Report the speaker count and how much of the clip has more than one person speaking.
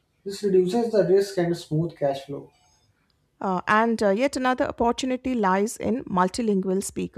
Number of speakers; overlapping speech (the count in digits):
2, no overlap